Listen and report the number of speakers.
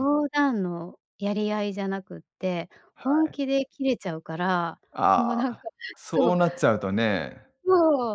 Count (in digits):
2